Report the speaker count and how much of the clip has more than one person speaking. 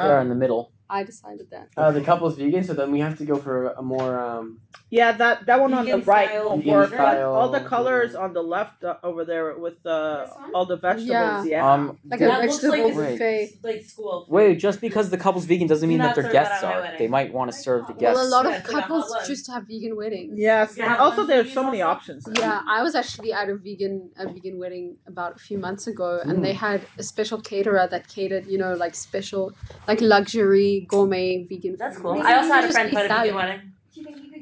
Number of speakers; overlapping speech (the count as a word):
six, about 40%